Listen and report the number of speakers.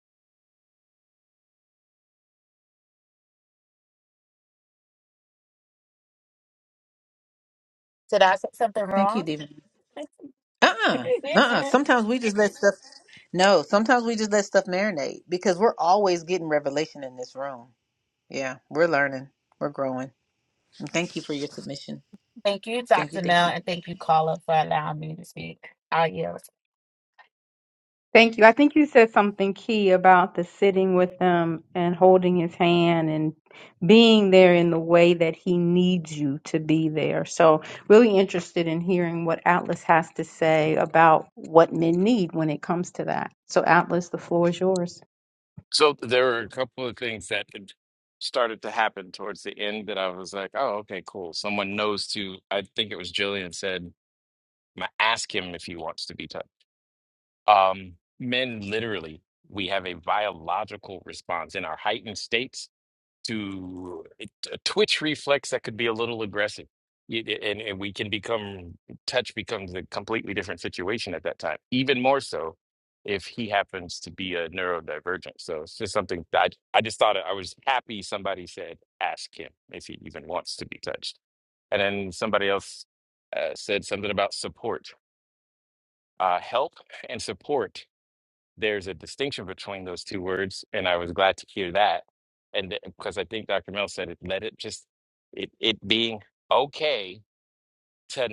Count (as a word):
four